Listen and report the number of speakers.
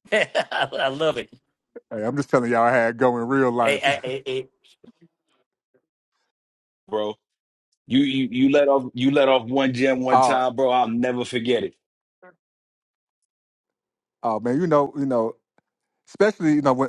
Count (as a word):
three